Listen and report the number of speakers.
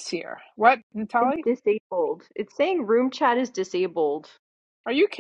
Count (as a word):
two